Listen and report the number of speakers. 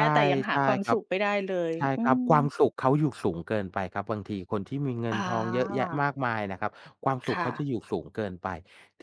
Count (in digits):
2